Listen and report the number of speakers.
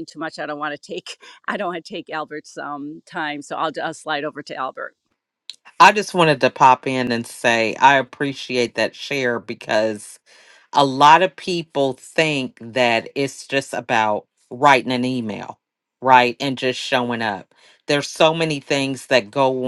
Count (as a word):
two